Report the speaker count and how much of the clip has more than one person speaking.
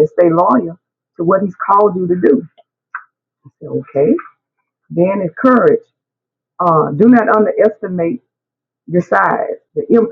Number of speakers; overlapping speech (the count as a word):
one, no overlap